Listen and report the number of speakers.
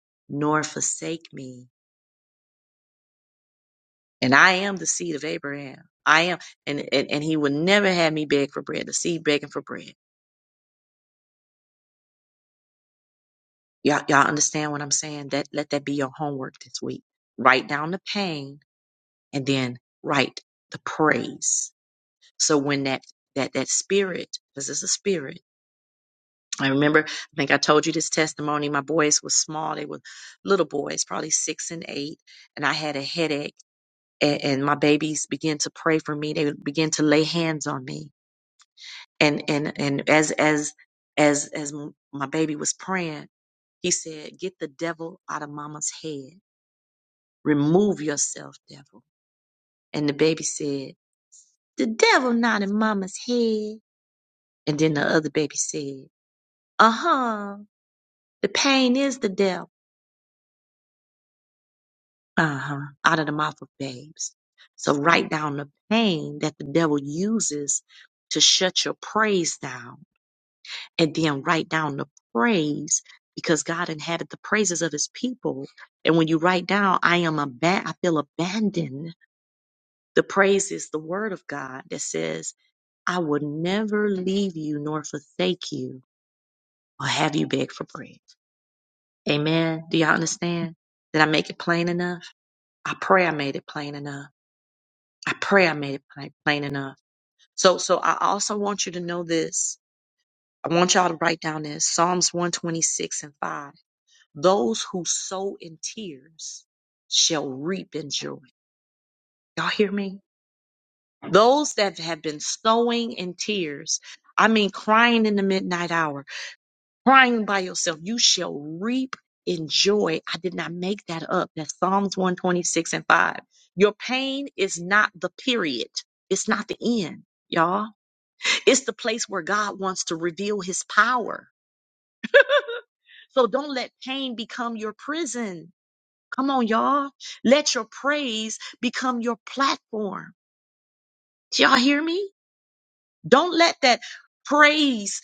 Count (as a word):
one